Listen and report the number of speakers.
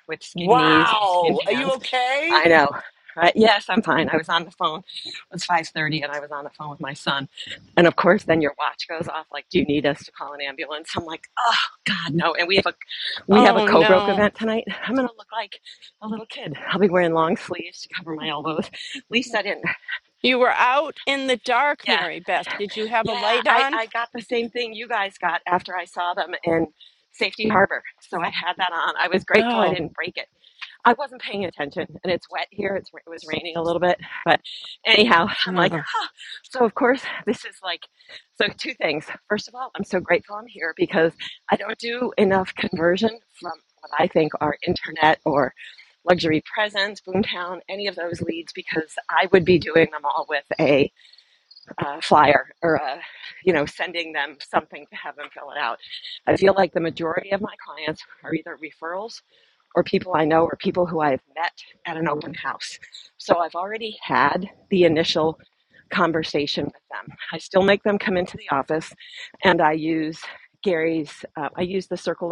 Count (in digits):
3